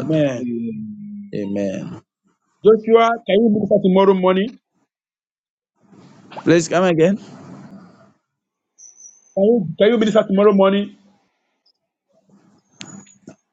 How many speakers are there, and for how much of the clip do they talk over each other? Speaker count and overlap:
three, about 3%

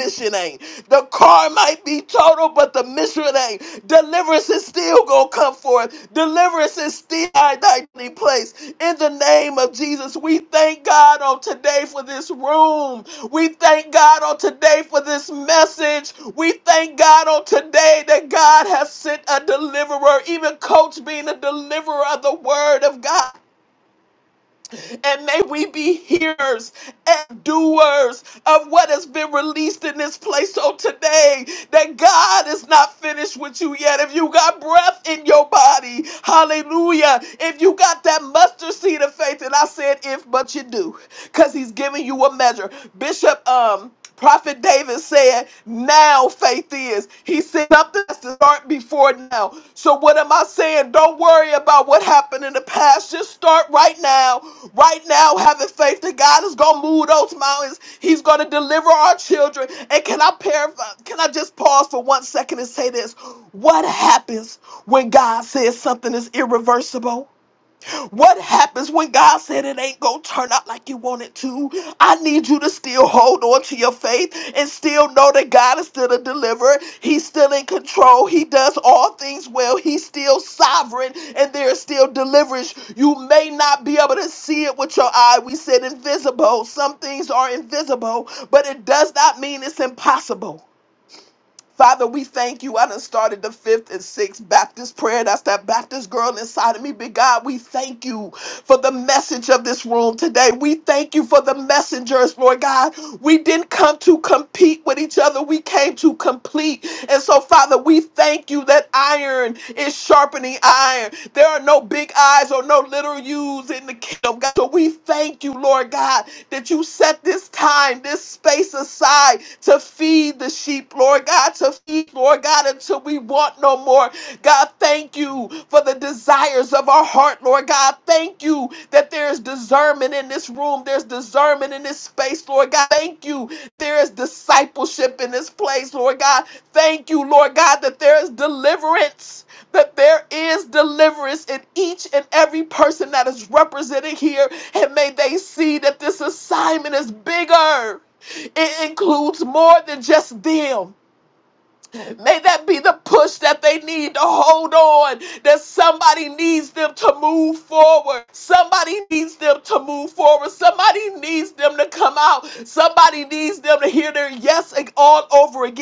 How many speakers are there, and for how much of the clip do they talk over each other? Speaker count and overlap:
one, no overlap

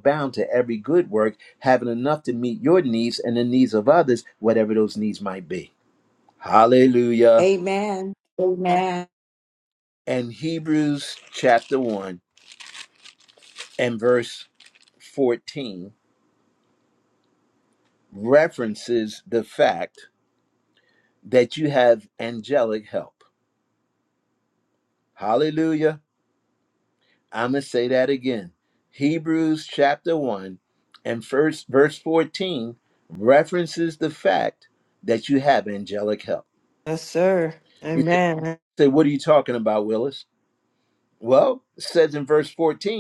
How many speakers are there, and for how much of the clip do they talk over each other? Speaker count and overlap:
three, about 1%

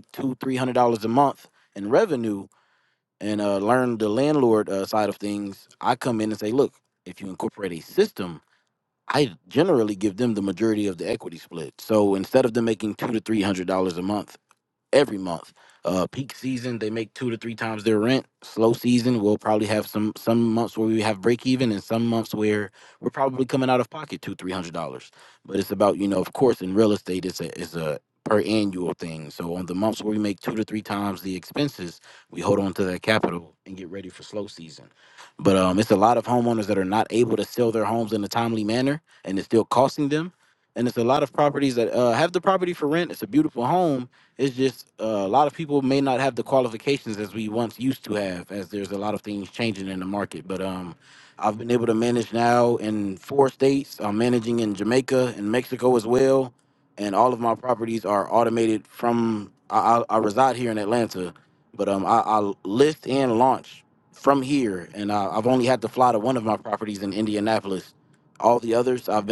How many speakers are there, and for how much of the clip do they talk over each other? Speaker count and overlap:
one, no overlap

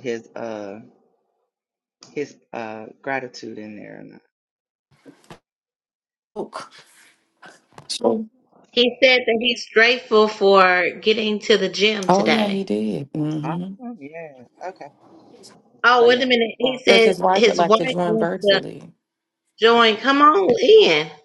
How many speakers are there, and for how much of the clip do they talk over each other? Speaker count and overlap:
three, about 16%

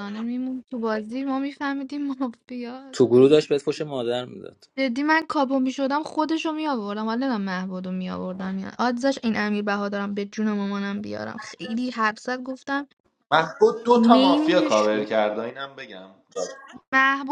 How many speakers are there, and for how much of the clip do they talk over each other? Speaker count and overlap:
three, about 7%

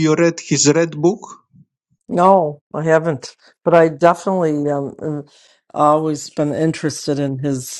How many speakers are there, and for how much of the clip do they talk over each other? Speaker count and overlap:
two, no overlap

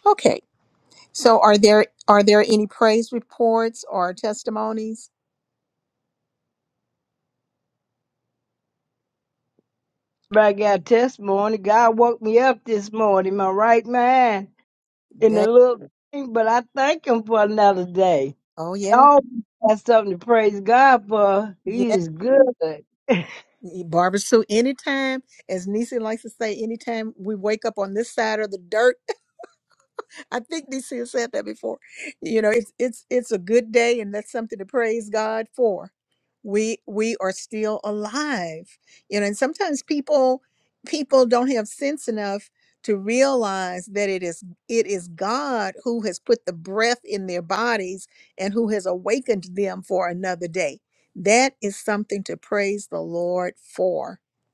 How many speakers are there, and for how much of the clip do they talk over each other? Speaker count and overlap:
two, about 1%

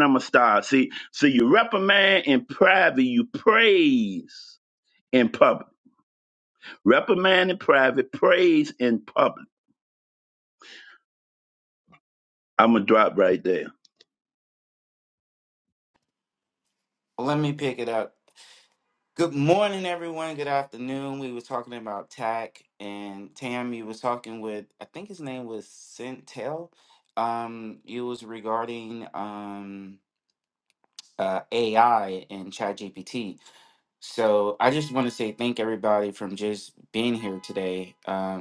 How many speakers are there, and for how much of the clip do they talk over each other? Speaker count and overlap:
two, no overlap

